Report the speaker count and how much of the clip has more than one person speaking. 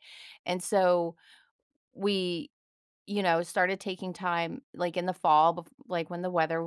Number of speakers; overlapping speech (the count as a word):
one, no overlap